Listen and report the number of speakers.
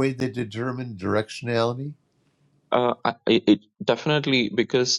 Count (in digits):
2